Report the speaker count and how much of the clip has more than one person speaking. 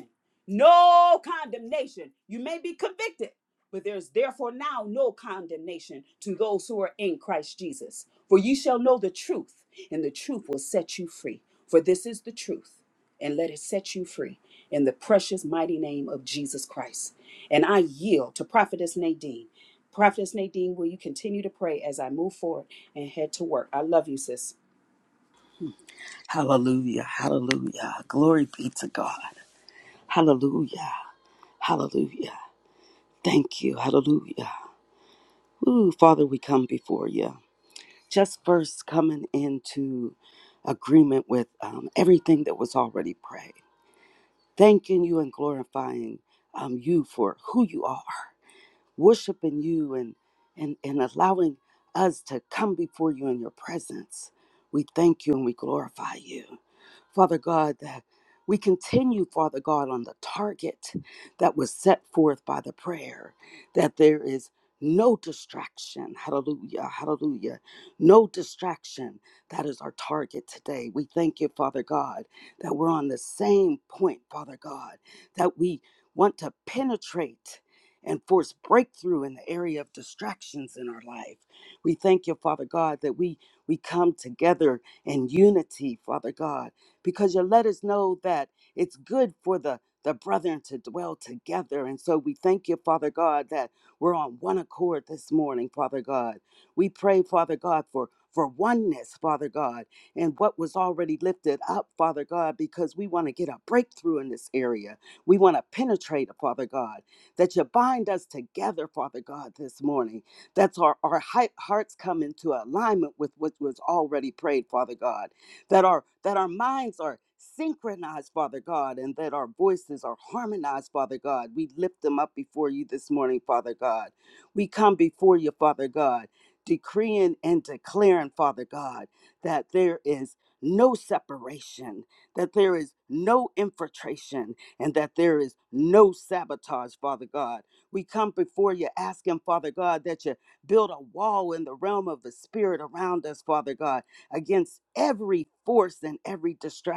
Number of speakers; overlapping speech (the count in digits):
2, no overlap